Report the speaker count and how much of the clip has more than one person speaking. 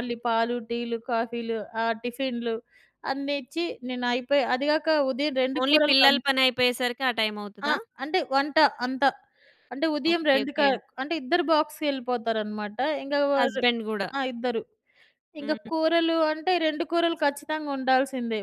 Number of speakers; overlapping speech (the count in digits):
2, about 12%